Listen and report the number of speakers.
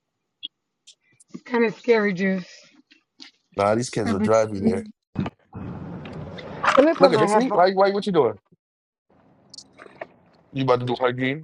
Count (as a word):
two